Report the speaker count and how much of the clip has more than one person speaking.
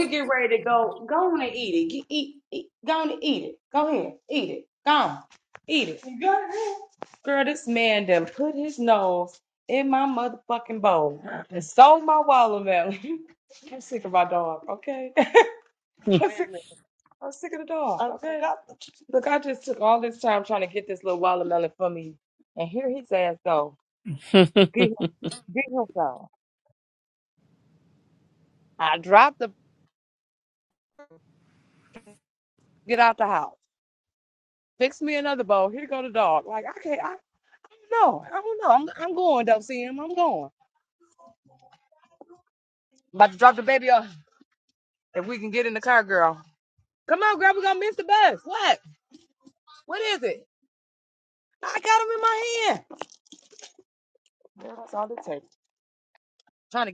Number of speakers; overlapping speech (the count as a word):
one, no overlap